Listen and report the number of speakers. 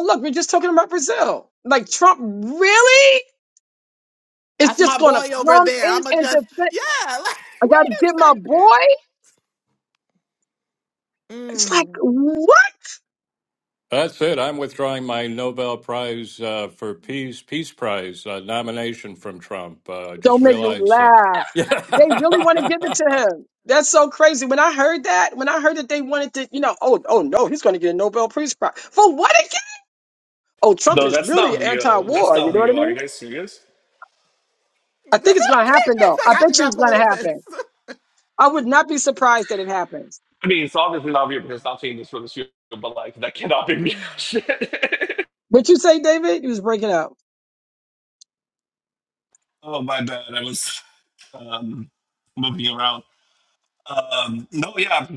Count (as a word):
four